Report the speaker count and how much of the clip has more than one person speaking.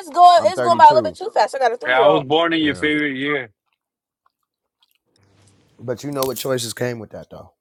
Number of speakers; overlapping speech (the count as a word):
three, about 19%